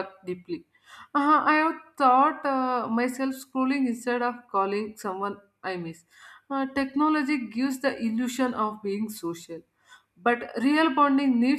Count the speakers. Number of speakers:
1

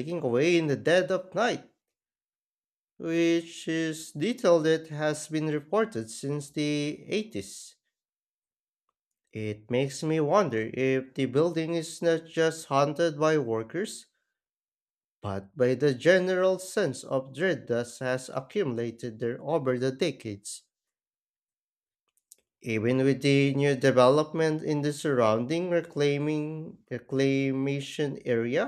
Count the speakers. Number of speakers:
1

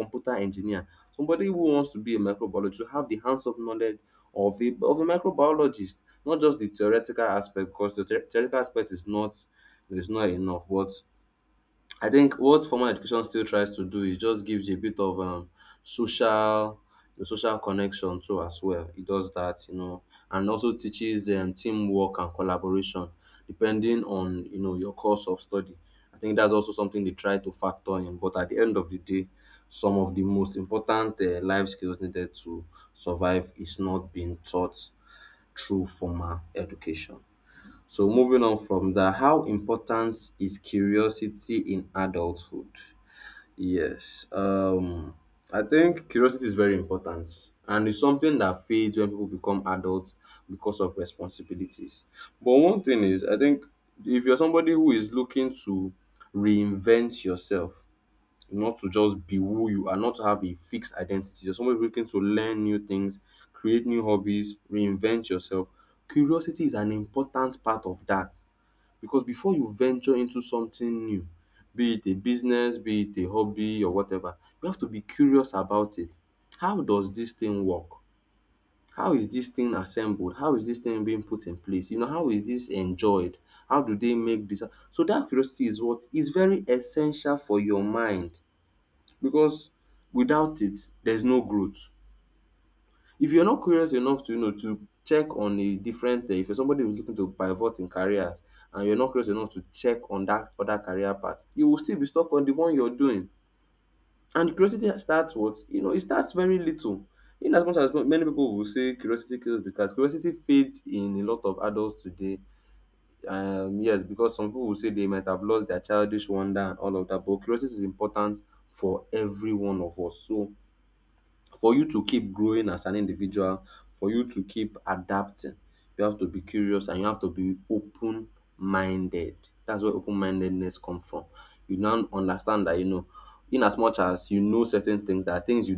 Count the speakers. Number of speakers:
1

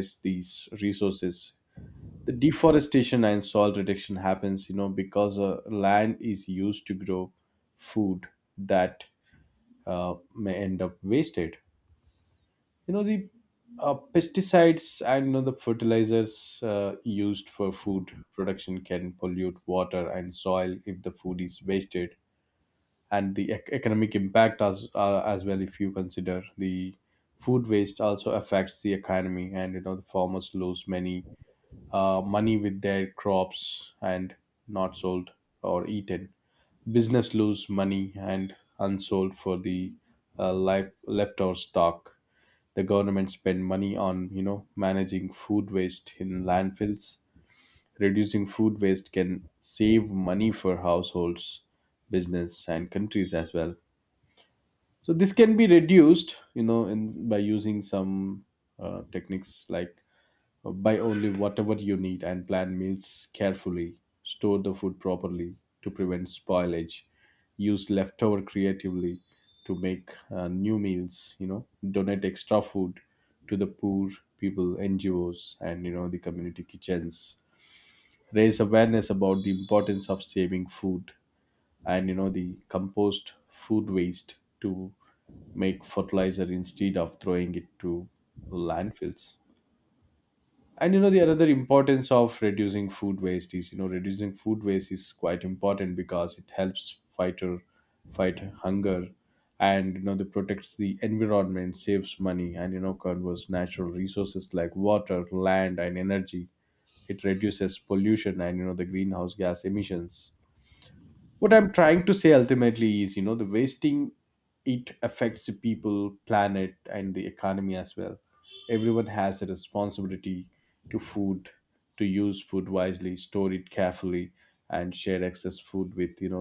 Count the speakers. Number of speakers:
1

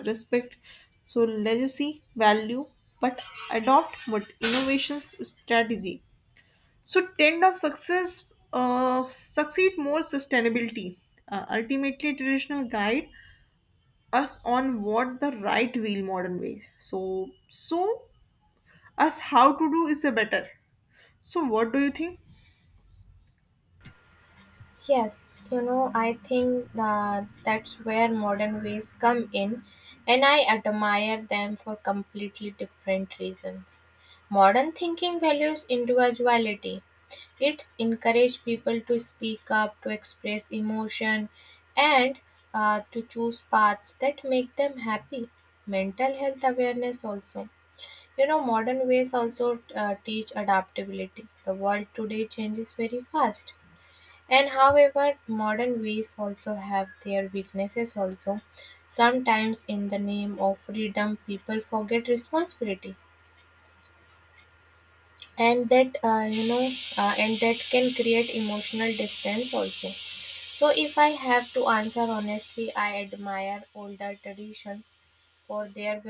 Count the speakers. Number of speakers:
2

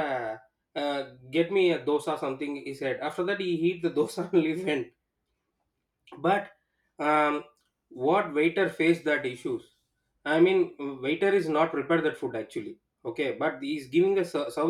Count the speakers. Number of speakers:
1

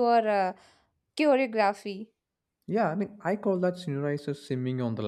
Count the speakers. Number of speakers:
2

